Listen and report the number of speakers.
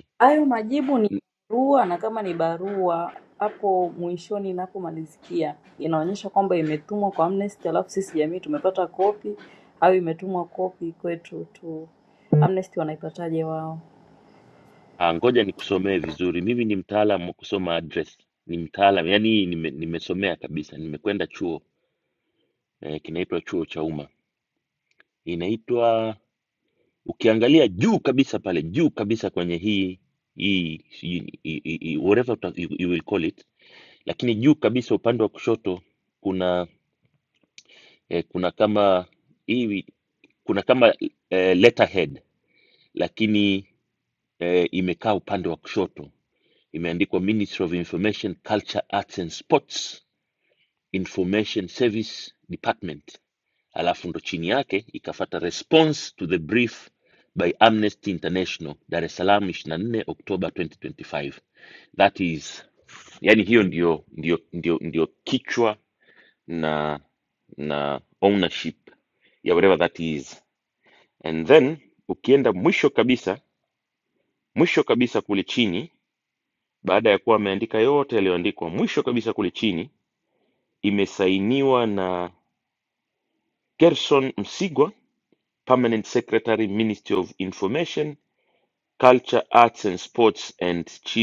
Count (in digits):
2